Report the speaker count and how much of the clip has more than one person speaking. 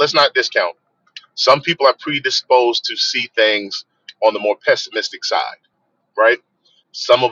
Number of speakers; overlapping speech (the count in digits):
1, no overlap